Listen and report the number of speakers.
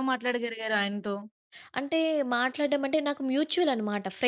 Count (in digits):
2